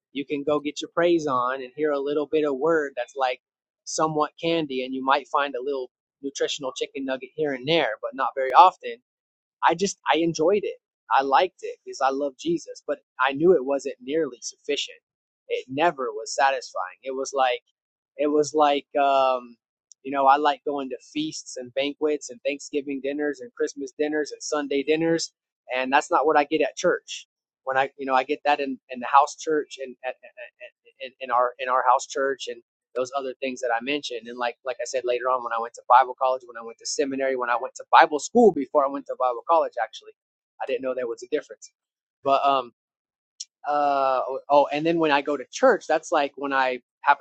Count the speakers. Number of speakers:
one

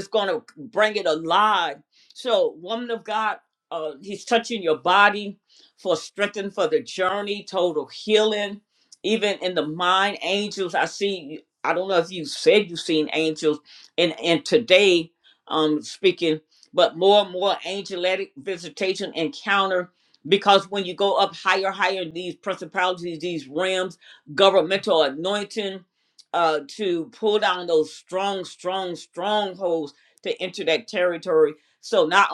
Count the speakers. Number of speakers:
one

